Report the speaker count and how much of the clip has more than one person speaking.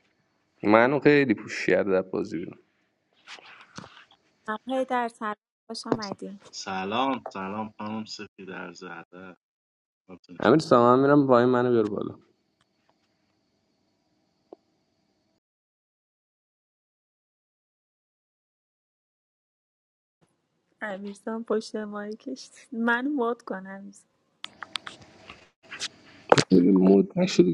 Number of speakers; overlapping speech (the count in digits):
3, under 1%